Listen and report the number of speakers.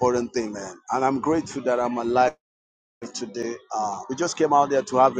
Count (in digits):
1